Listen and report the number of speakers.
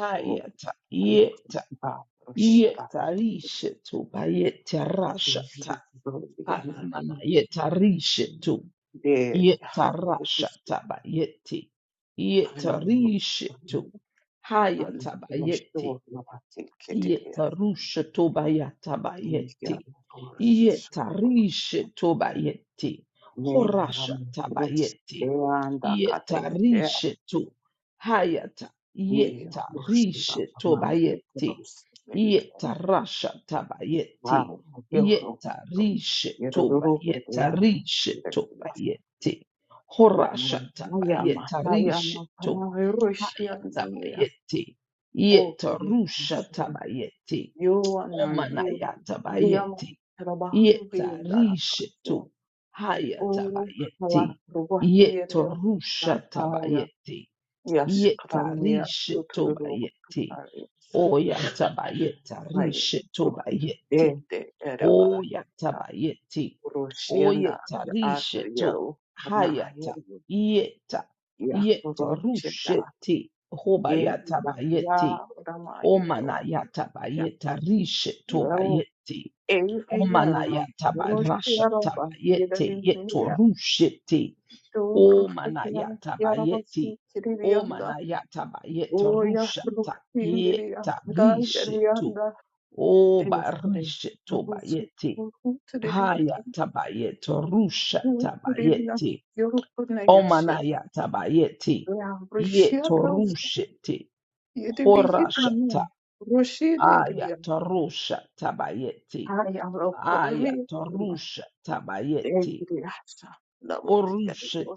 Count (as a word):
two